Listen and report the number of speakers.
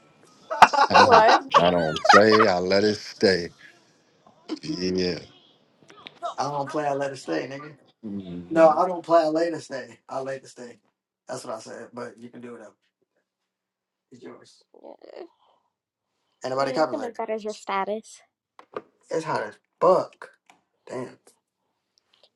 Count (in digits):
3